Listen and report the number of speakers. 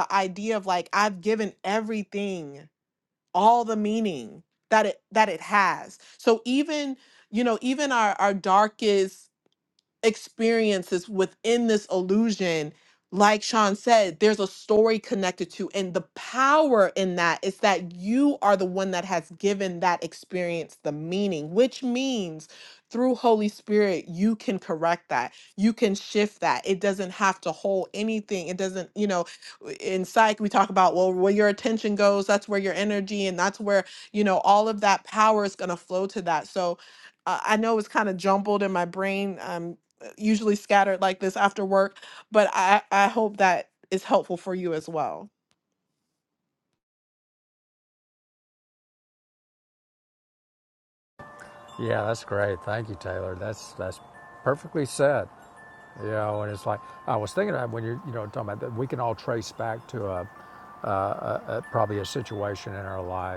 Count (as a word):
two